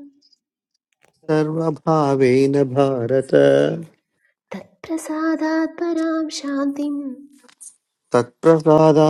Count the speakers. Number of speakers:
two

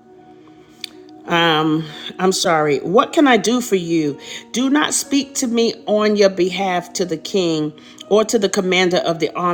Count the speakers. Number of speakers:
one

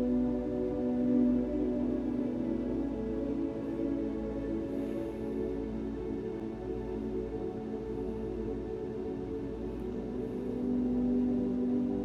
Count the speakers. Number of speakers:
zero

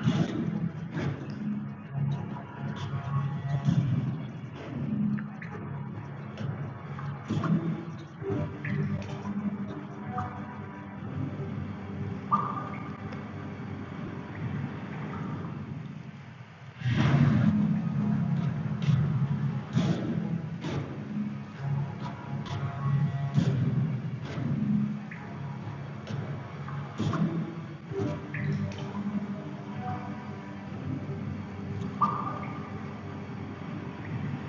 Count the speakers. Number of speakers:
zero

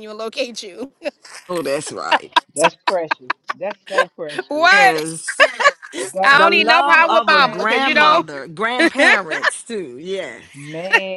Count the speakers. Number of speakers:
three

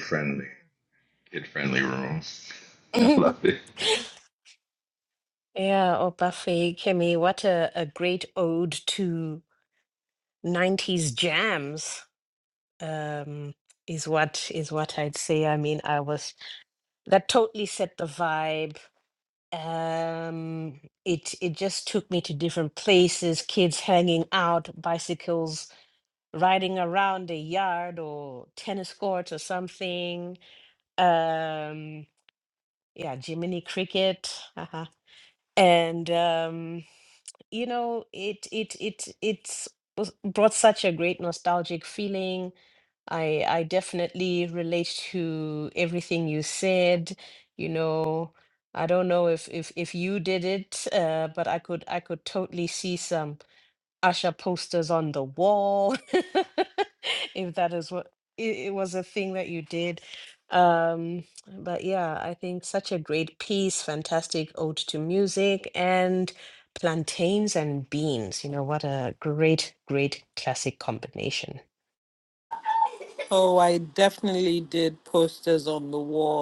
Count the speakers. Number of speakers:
three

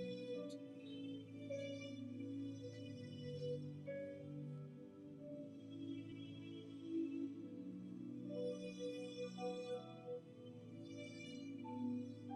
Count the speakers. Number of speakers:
zero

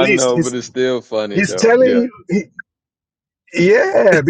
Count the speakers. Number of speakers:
two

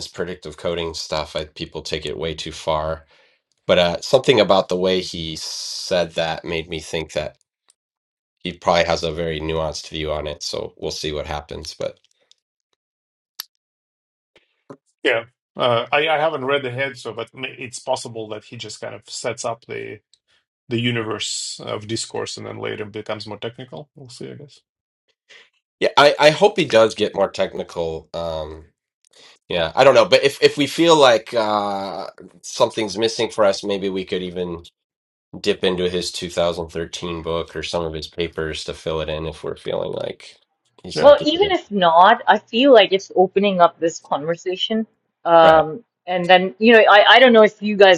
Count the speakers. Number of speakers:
three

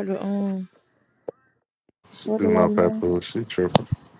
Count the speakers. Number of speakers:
two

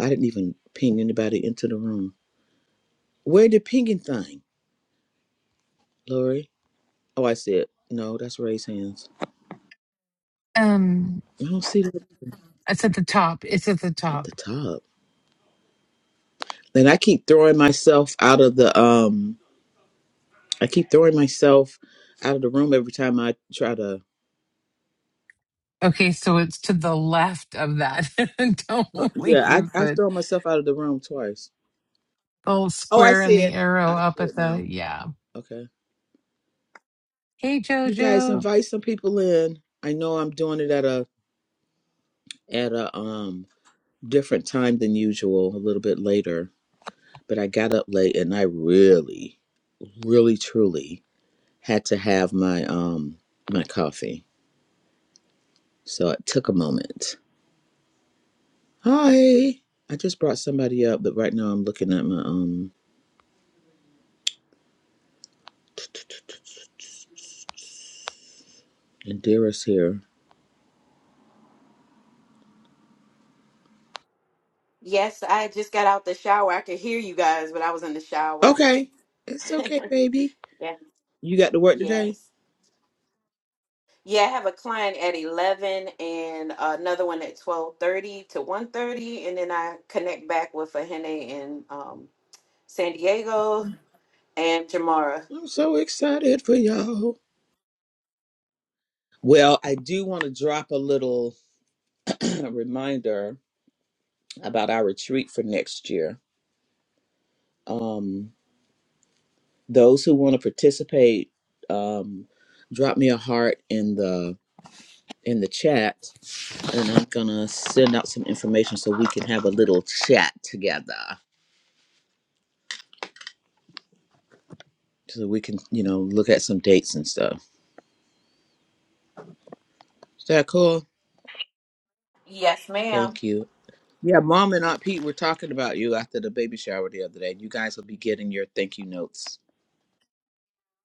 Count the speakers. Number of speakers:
three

